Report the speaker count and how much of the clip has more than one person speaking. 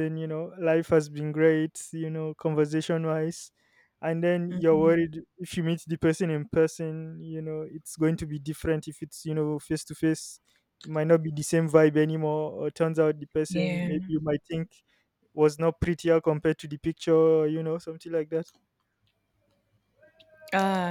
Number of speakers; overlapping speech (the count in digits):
2, about 5%